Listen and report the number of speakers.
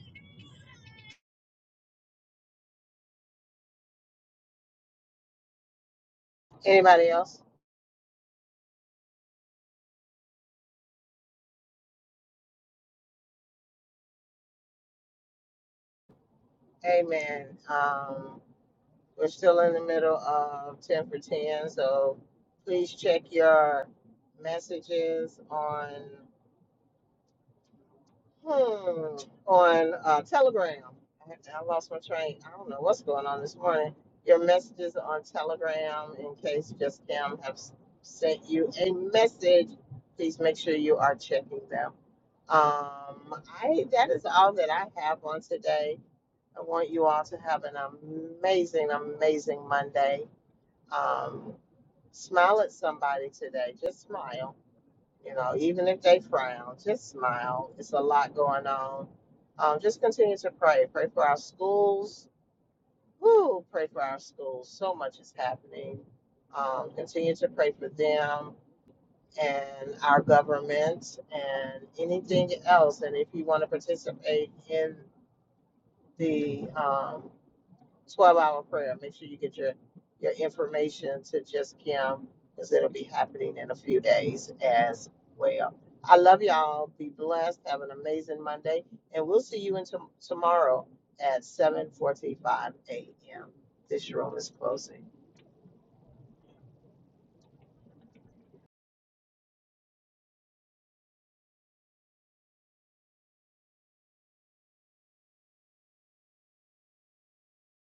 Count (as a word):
one